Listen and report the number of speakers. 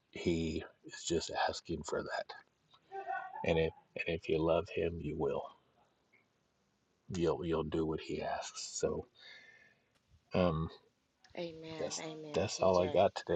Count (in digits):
2